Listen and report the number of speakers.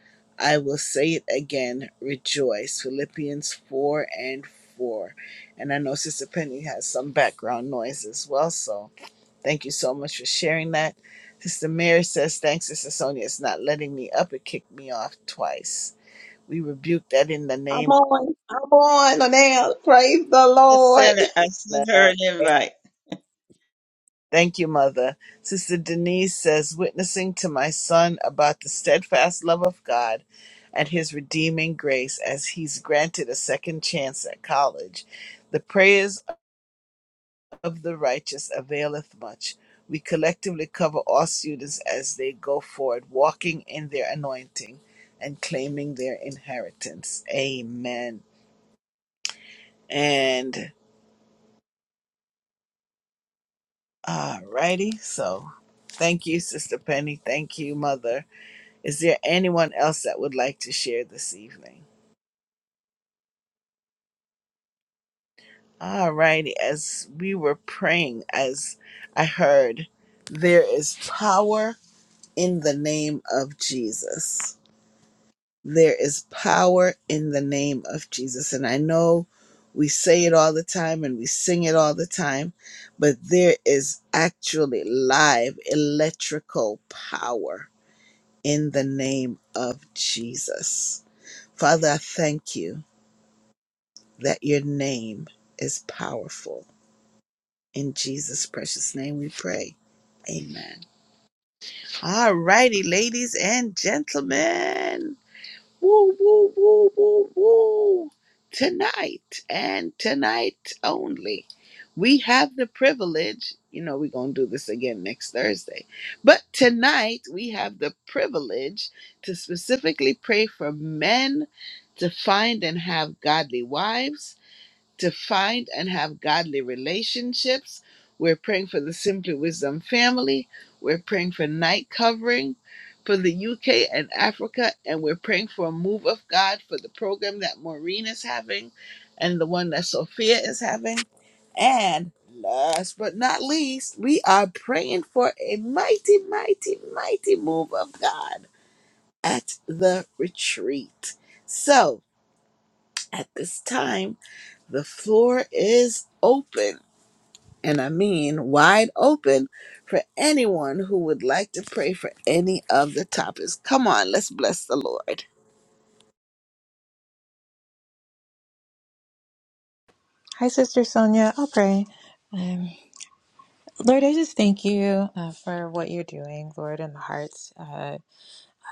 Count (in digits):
4